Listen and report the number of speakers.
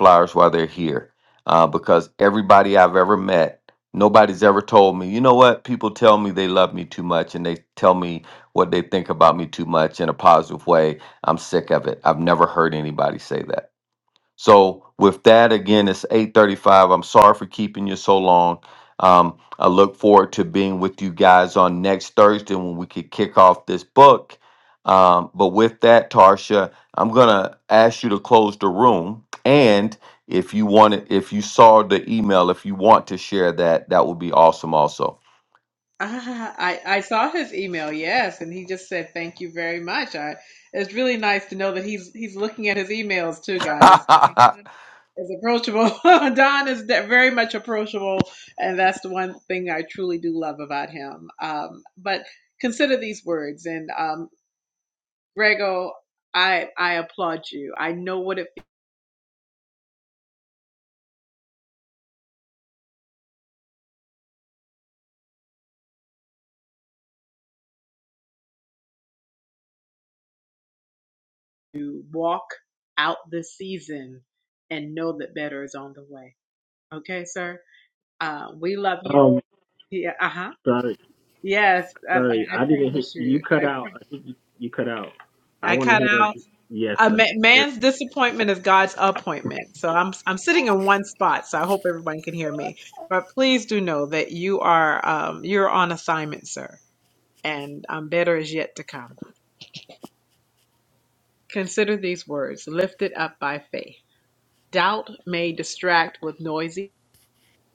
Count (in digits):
3